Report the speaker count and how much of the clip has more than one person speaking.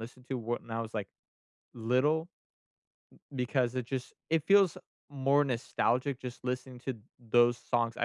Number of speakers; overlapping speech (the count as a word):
one, no overlap